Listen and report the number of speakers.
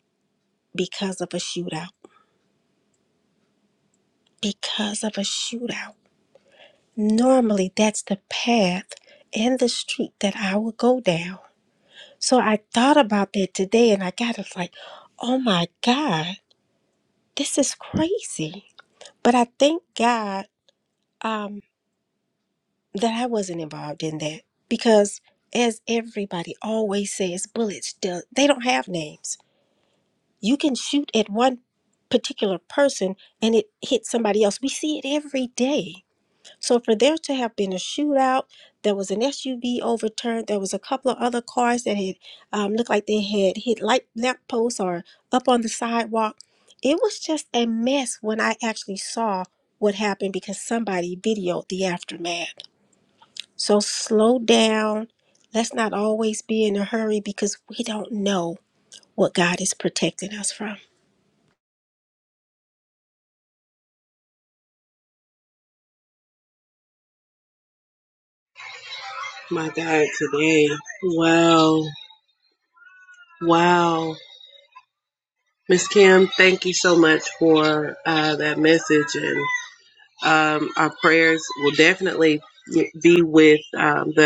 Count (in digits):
2